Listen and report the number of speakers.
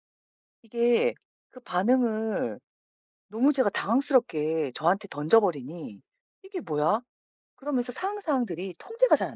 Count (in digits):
1